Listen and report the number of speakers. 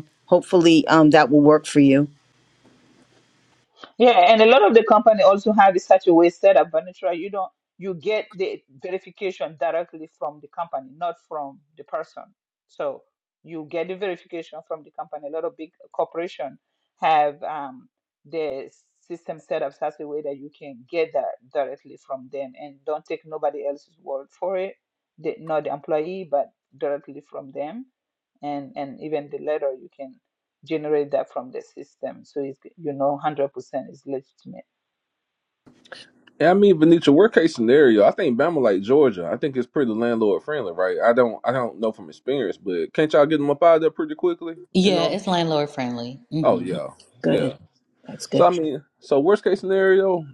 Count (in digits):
4